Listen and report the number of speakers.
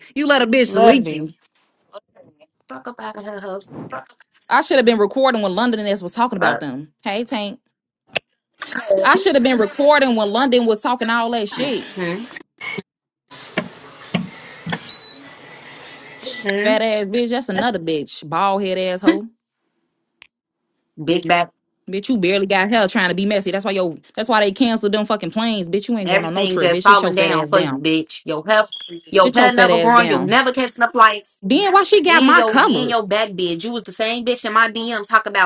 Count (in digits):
2